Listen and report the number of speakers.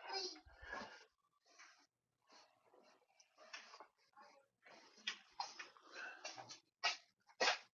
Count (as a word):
zero